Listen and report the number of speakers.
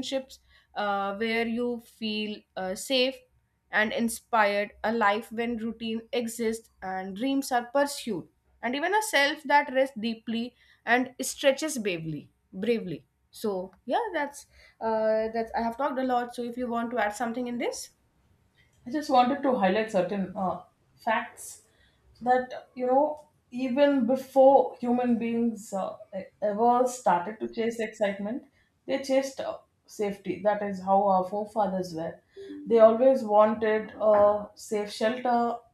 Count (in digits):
2